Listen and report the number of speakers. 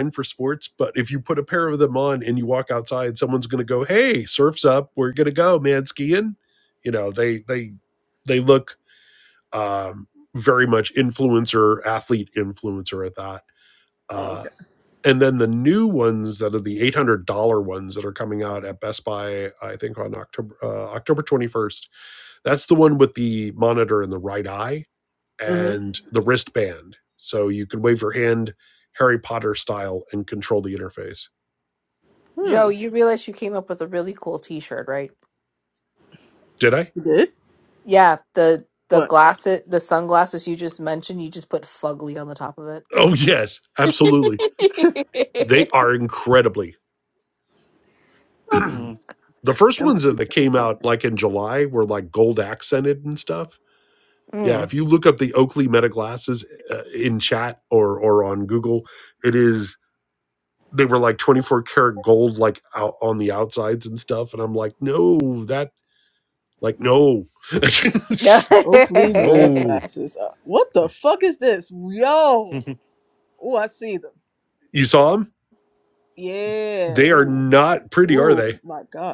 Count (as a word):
three